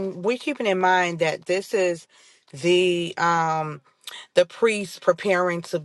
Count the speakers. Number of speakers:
one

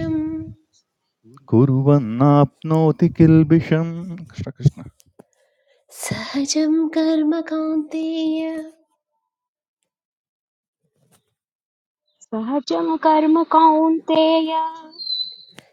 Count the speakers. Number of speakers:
three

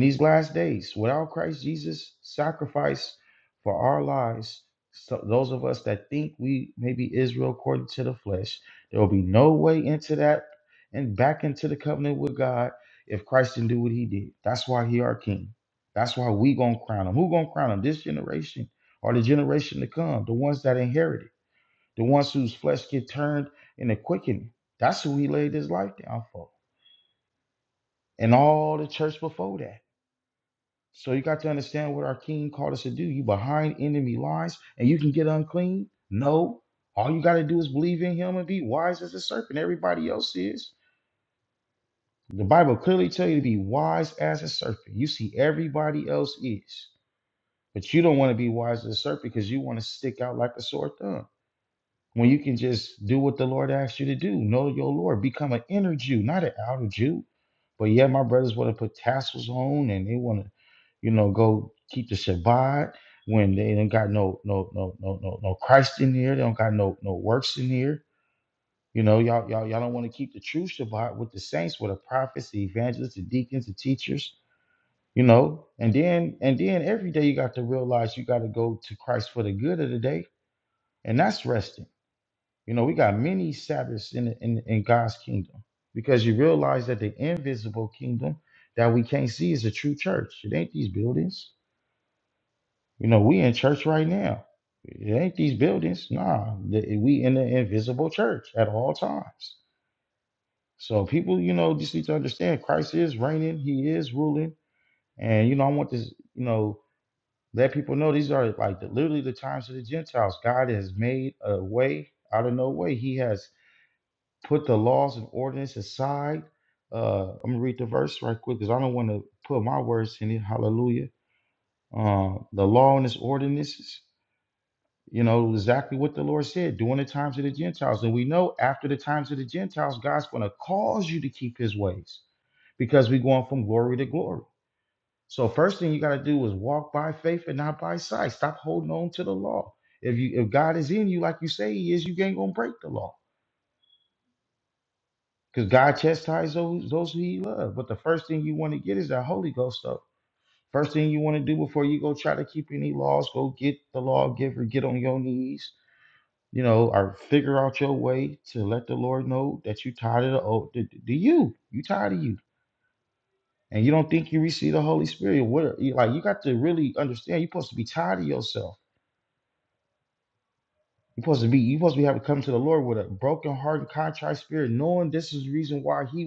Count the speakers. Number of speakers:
one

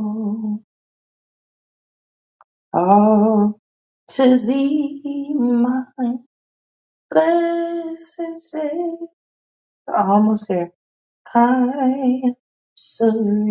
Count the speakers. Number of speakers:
one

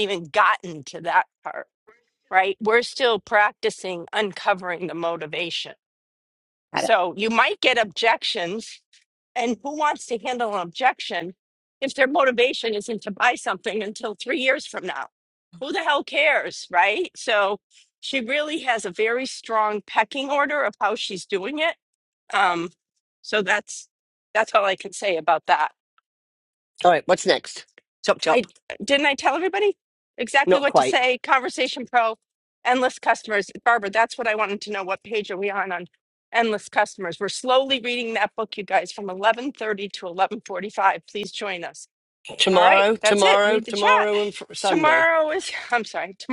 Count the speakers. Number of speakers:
two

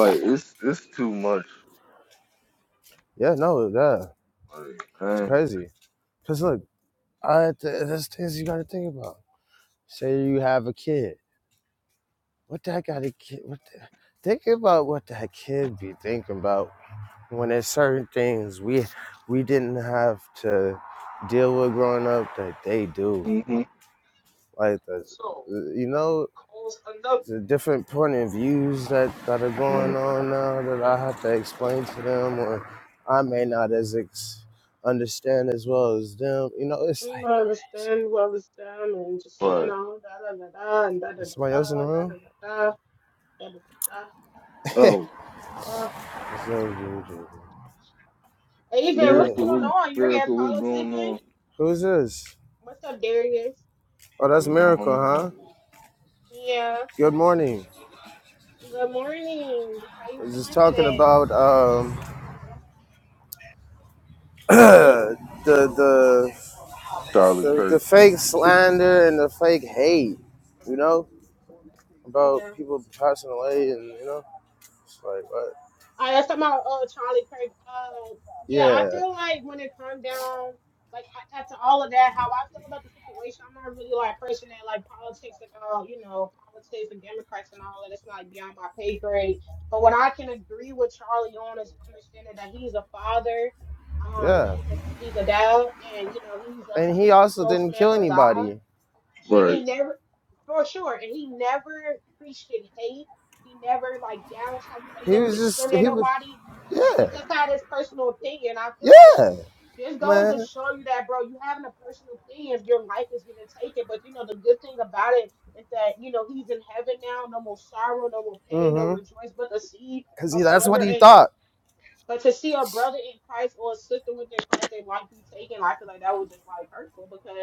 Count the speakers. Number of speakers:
three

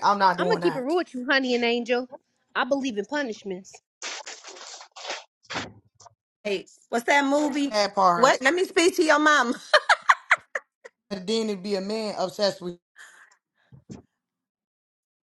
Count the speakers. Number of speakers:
three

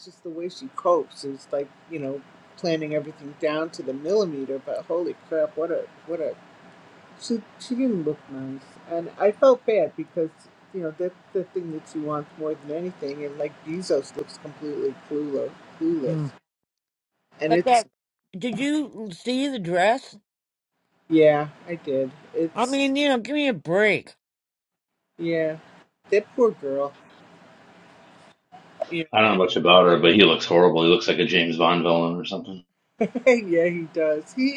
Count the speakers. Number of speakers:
three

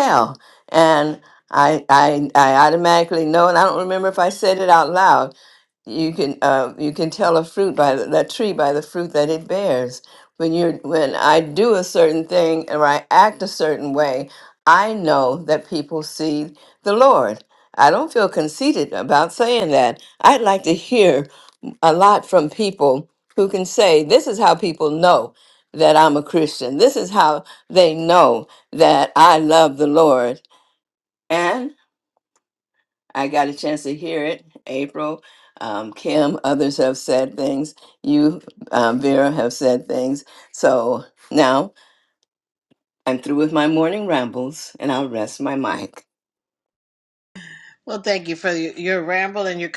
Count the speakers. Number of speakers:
two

